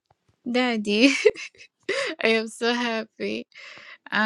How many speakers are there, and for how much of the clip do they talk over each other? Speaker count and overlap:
one, no overlap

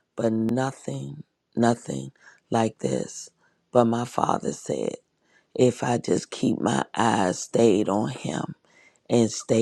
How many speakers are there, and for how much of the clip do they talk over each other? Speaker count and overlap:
one, no overlap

